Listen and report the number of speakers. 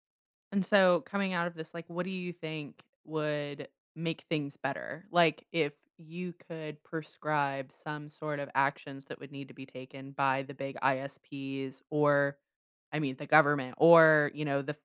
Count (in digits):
1